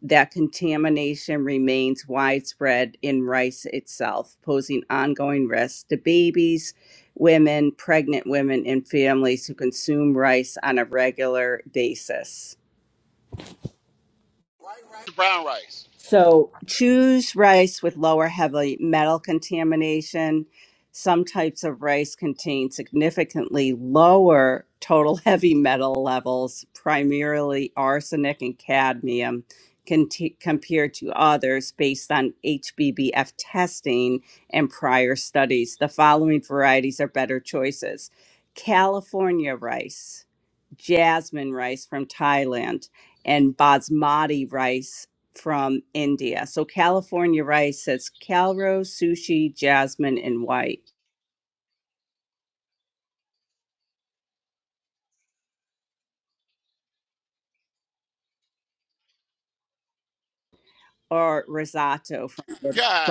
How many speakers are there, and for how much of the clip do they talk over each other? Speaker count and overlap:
two, under 1%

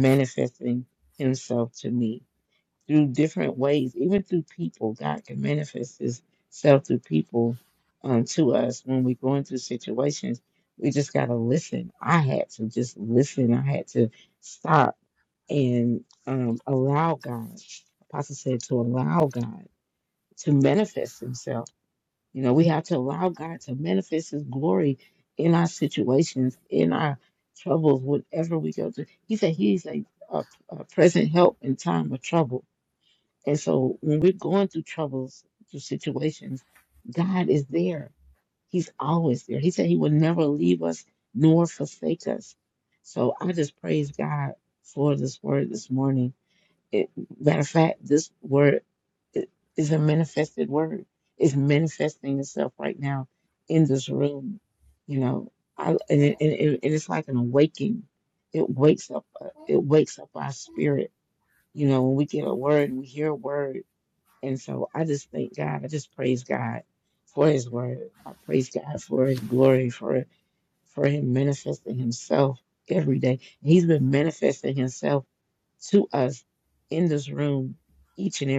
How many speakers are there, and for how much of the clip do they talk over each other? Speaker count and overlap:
one, no overlap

